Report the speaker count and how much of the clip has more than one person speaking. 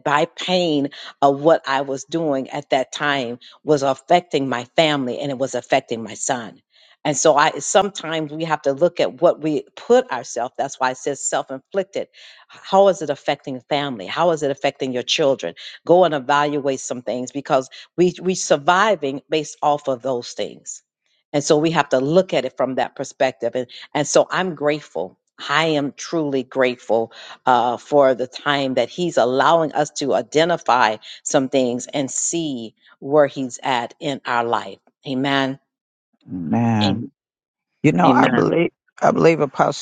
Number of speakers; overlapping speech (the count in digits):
2, about 1%